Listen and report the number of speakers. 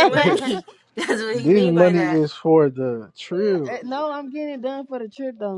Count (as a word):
three